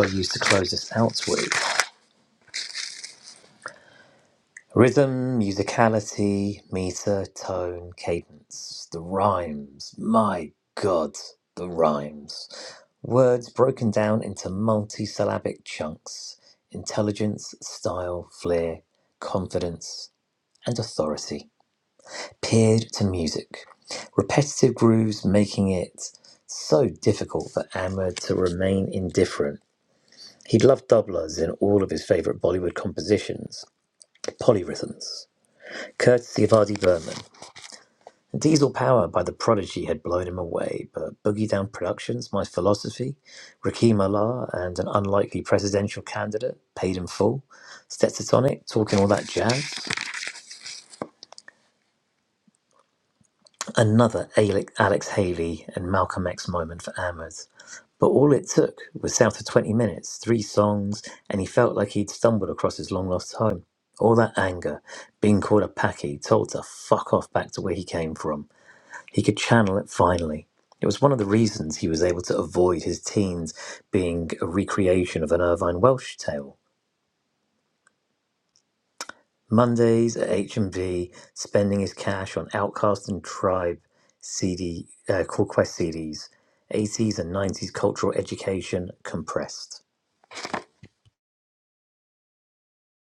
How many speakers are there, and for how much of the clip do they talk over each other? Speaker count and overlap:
one, no overlap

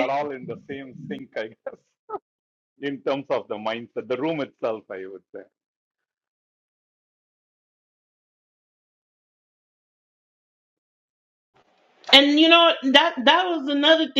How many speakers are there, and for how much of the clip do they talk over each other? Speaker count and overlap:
two, about 1%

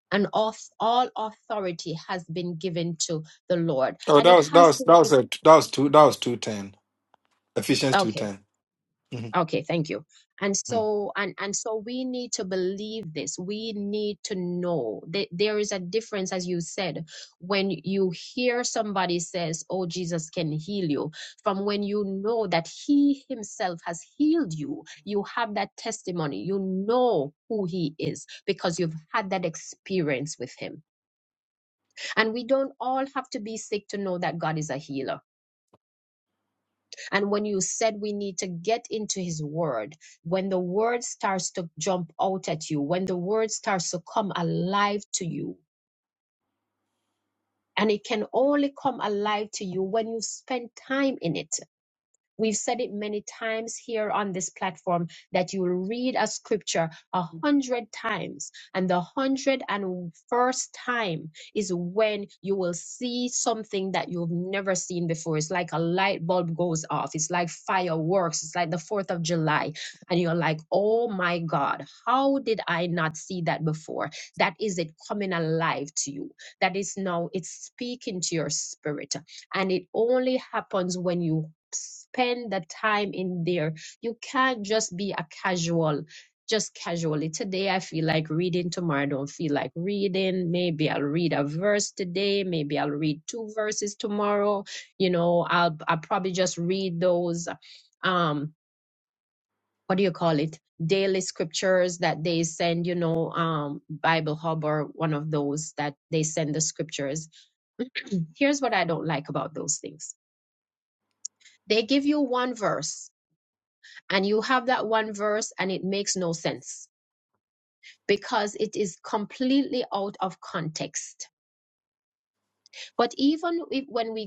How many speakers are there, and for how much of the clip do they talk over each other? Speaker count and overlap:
two, about 1%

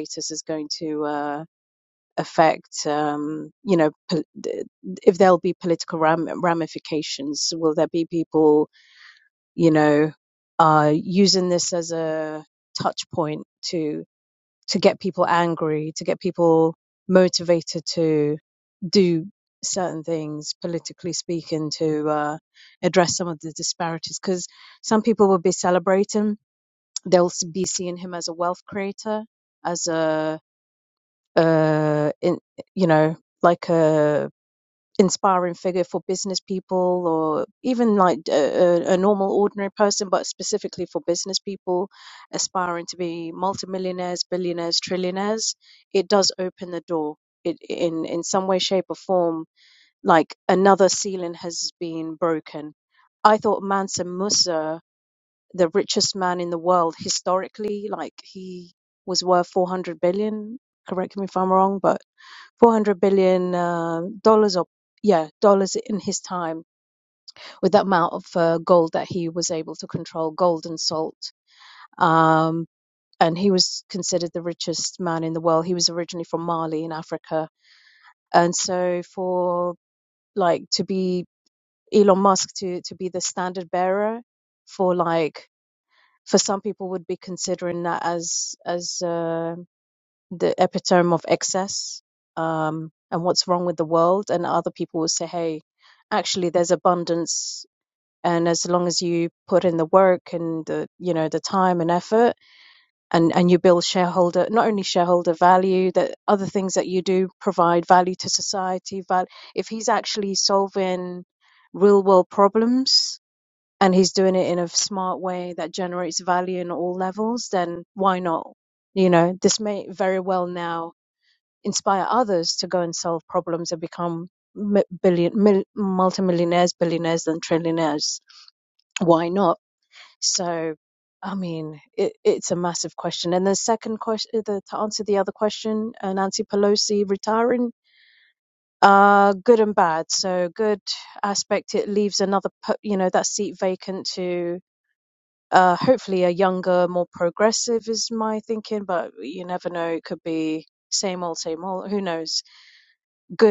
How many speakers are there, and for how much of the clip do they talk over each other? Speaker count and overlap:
one, no overlap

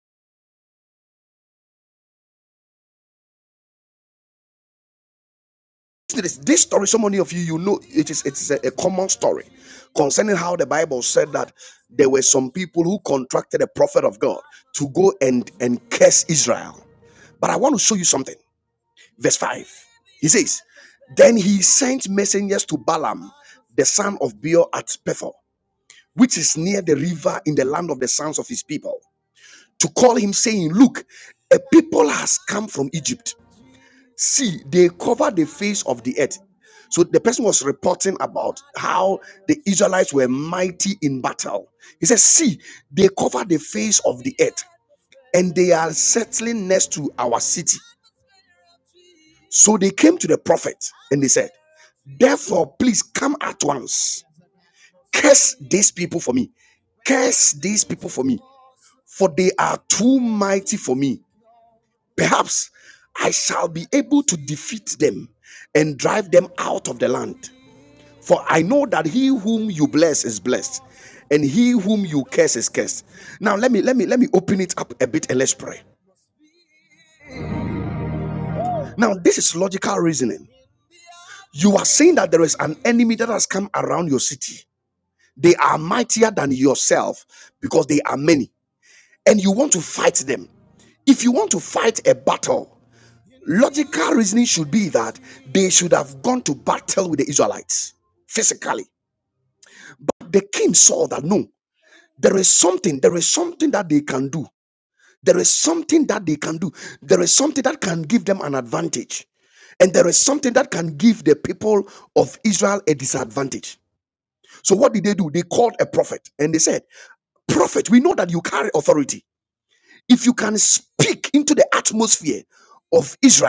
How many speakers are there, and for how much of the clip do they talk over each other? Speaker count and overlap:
one, no overlap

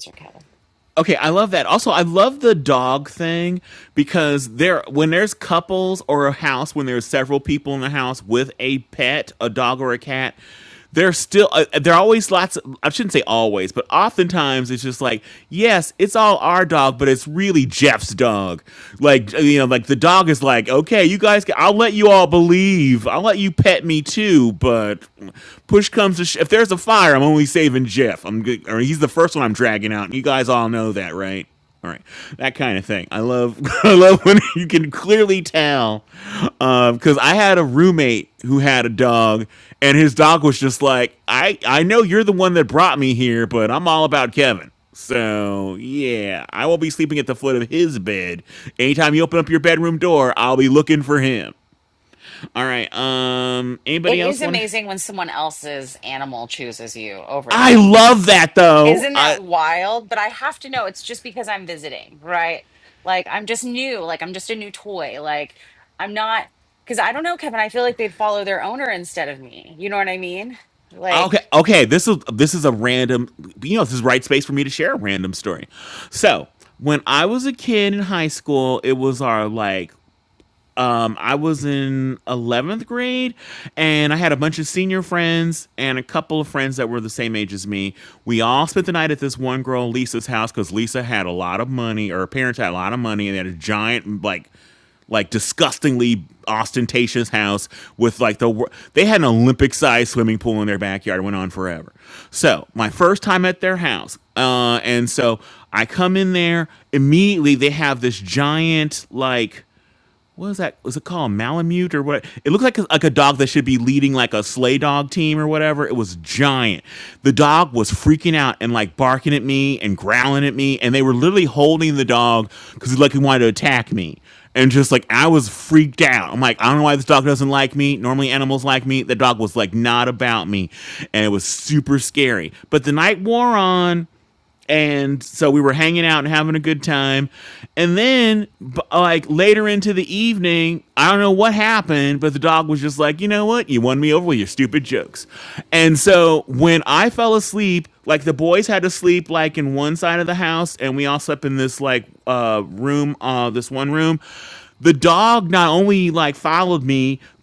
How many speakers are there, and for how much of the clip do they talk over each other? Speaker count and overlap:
two, about 1%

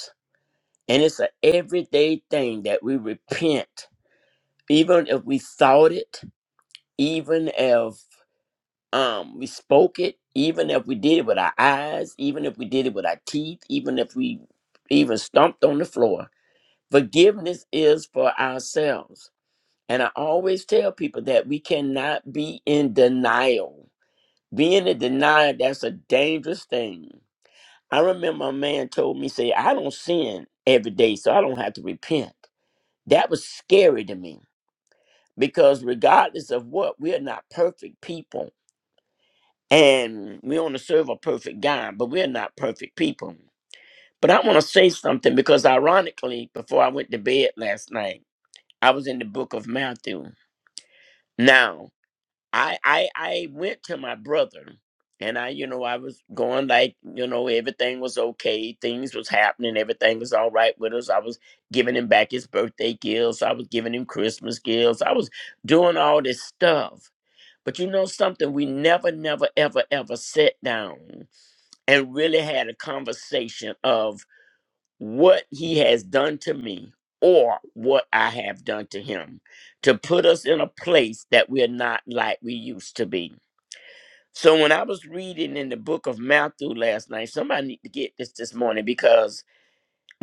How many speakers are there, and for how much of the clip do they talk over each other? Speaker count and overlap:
one, no overlap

